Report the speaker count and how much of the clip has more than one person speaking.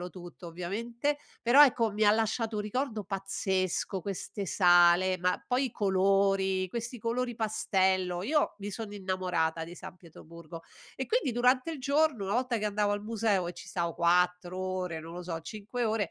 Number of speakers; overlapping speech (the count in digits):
1, no overlap